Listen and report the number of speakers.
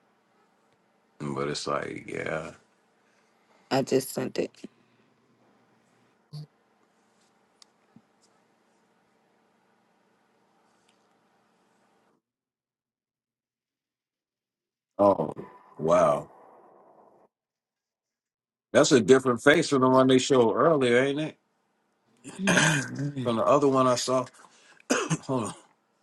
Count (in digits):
2